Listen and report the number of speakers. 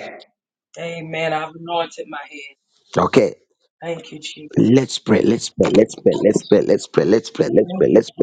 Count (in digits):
2